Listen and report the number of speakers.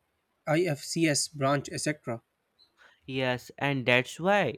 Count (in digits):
2